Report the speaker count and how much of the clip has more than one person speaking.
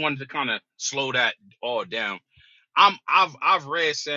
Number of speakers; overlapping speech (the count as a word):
one, no overlap